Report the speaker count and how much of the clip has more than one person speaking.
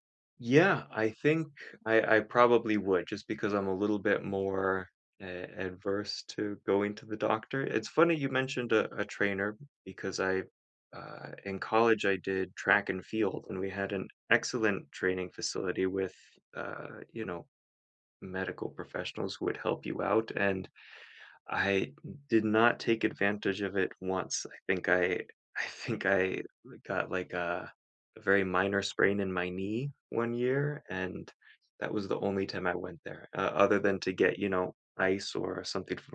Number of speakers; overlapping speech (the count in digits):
1, no overlap